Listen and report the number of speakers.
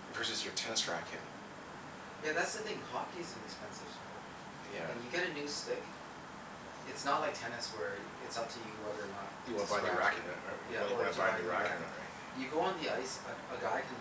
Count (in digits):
2